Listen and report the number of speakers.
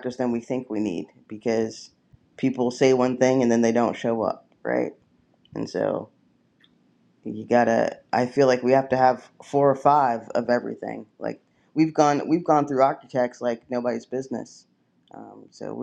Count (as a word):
one